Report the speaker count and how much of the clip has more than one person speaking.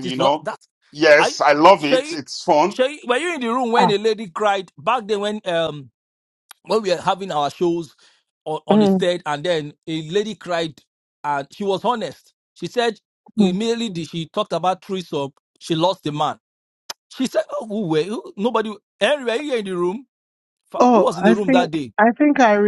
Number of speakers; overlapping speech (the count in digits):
3, about 12%